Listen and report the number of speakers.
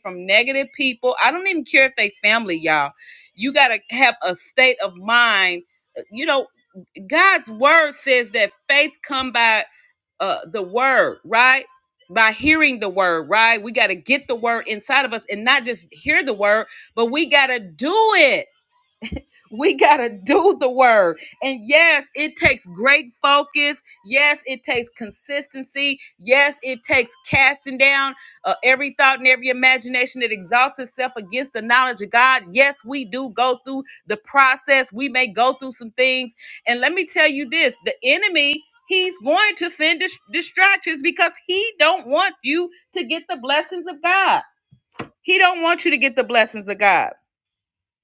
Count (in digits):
1